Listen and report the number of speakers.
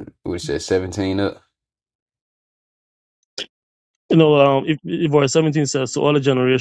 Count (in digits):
2